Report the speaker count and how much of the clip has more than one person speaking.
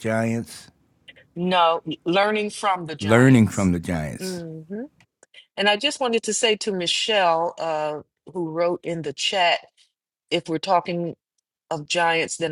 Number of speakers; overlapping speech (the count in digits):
2, about 5%